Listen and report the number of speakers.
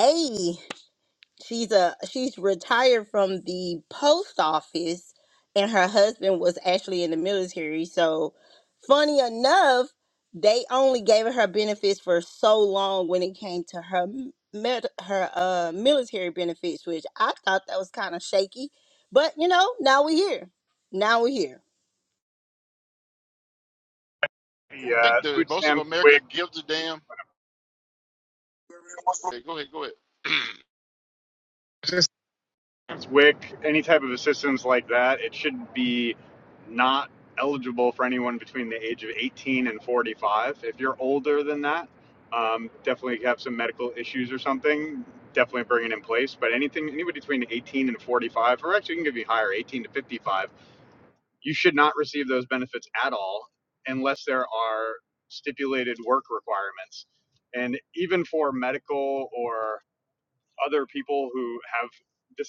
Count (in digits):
3